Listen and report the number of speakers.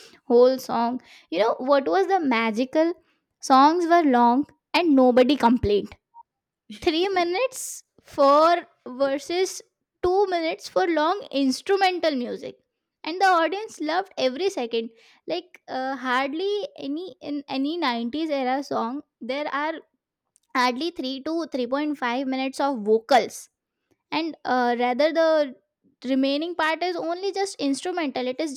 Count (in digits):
1